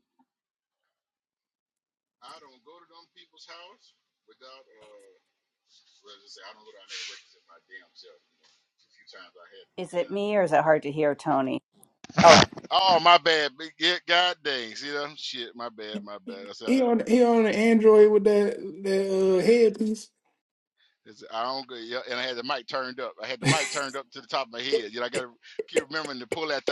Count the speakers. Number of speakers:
3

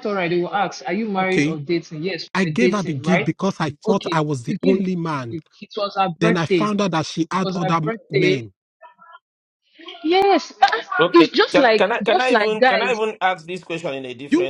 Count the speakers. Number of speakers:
3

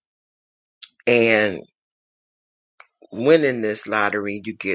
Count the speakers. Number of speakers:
1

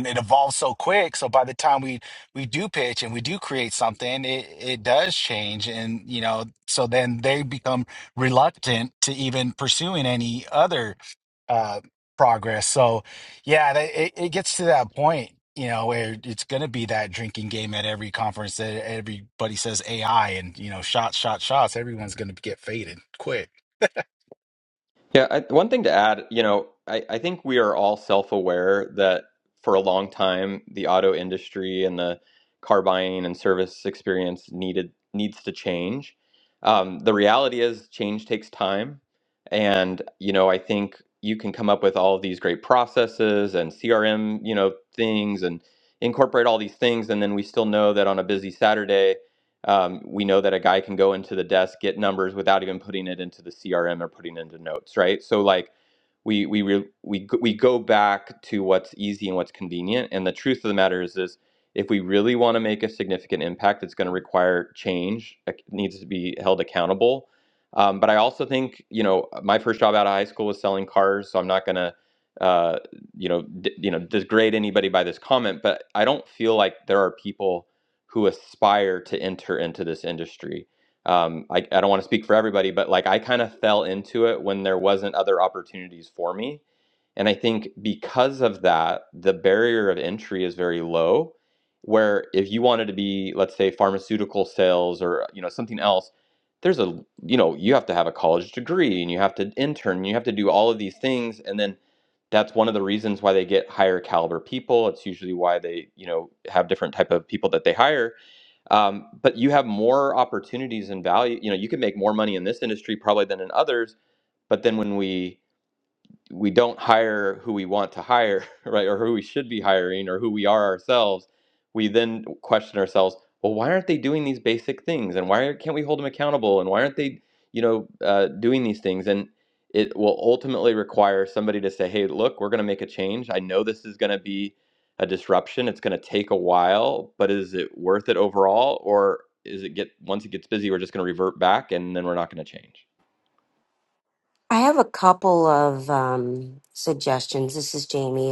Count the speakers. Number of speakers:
3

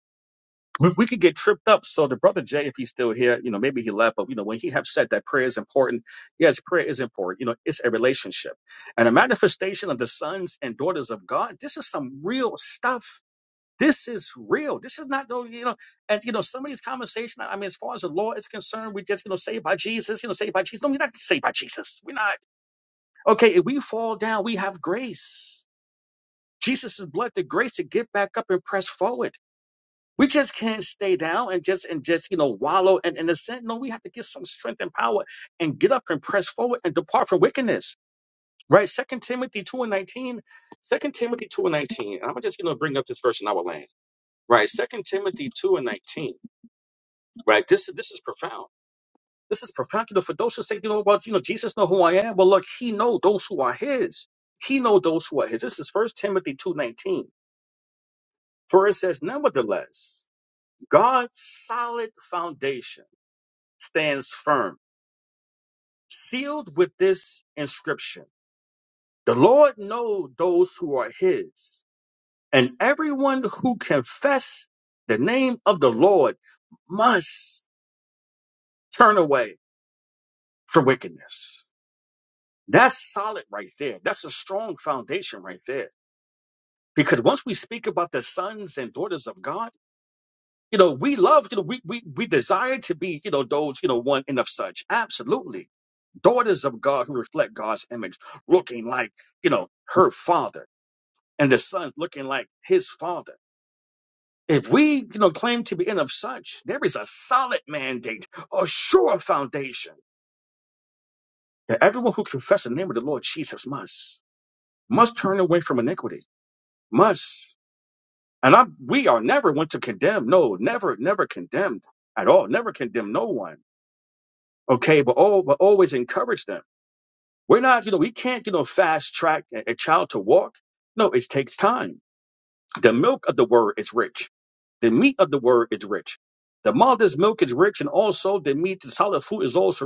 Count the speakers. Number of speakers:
1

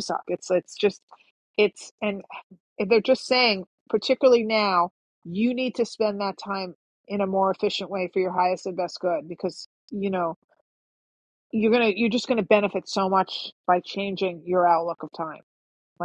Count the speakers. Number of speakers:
1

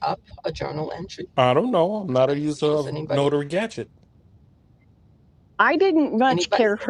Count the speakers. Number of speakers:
3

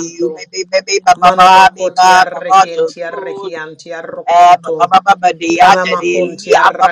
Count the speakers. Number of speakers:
2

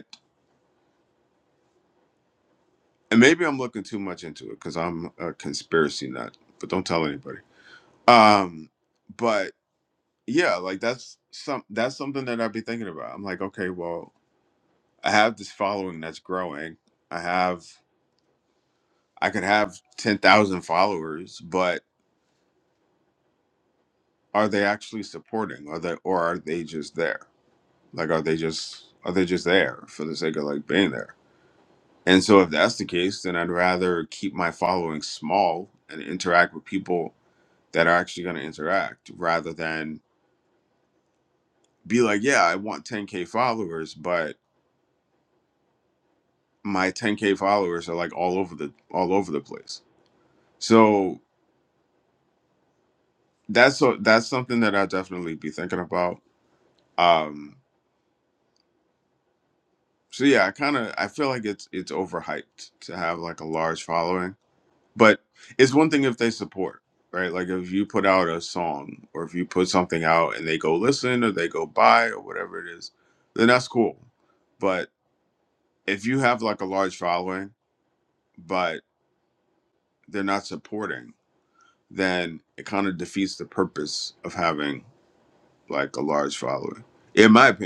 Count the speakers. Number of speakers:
1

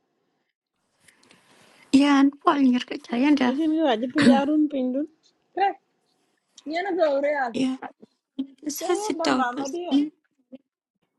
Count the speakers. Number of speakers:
3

